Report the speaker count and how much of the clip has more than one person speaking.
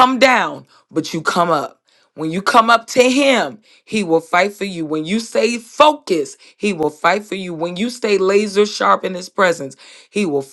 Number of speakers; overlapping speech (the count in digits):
1, no overlap